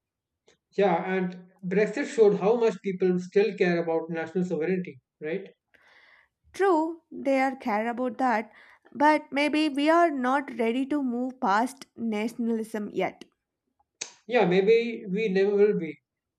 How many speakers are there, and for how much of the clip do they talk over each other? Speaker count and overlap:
2, no overlap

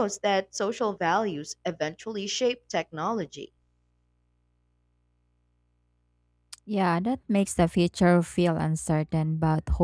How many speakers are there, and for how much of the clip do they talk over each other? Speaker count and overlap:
2, no overlap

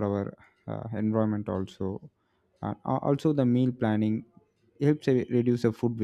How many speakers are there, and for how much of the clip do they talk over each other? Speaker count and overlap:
1, no overlap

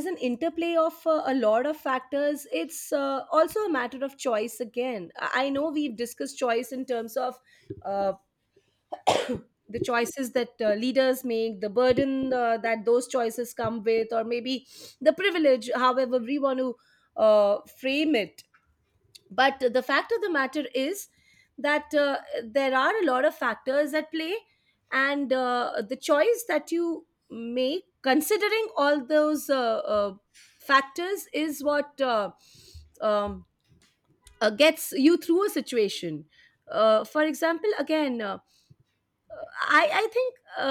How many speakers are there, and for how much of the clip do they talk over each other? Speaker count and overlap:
1, no overlap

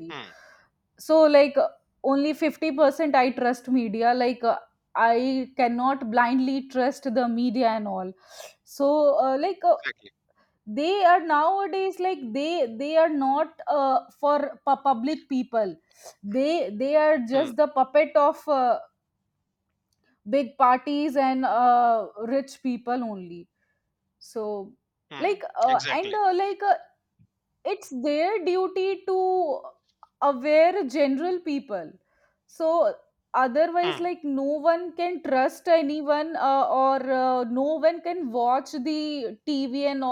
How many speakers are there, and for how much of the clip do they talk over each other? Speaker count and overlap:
2, about 4%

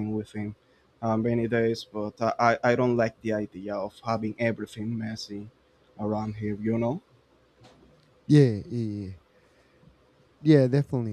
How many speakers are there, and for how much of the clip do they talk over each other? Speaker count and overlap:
2, no overlap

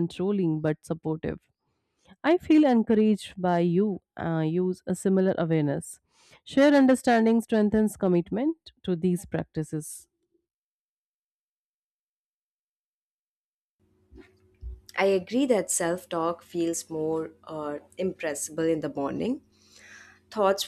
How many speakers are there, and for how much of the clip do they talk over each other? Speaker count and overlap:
2, no overlap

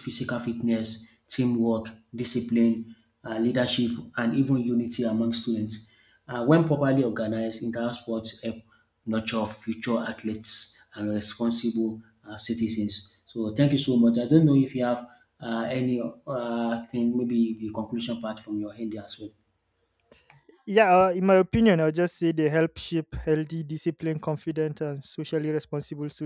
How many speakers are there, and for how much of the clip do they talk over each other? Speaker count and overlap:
2, no overlap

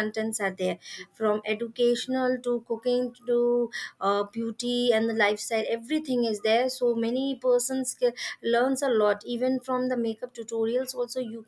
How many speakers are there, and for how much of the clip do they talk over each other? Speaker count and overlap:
1, no overlap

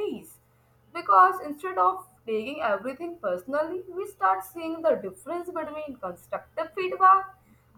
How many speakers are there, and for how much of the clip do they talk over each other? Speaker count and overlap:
1, no overlap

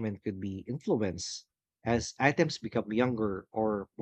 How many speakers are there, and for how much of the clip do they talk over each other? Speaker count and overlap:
1, no overlap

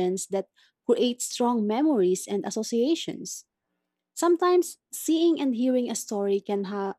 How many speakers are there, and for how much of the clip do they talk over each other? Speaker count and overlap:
1, no overlap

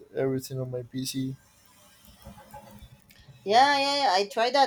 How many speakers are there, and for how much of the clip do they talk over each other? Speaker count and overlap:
2, no overlap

